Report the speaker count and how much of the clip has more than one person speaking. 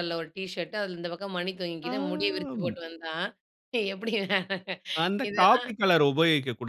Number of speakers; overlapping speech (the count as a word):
two, about 13%